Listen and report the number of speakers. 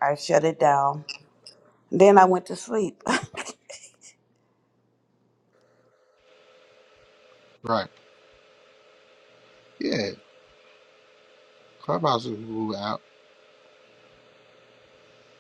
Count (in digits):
2